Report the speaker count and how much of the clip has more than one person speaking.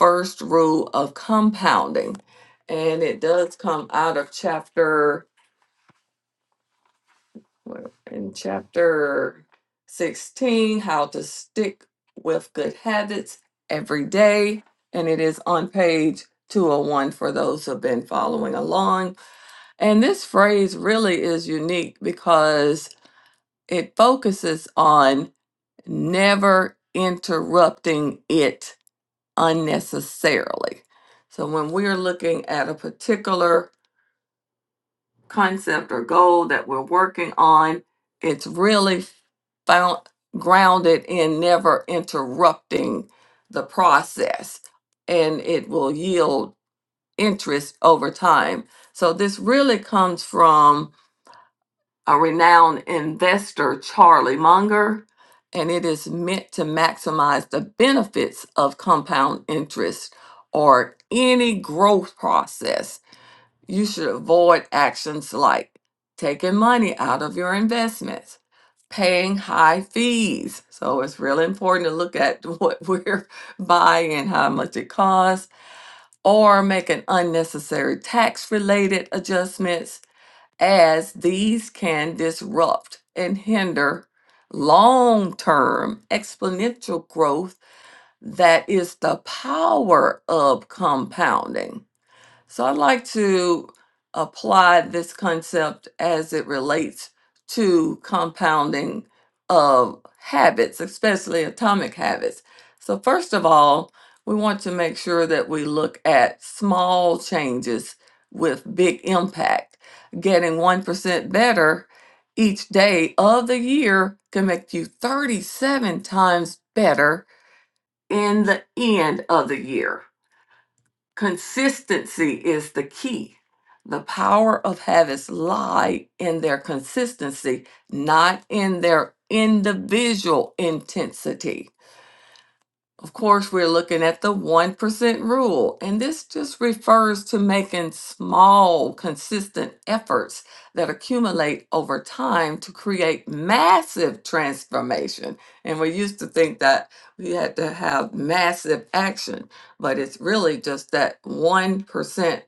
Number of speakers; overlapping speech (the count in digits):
1, no overlap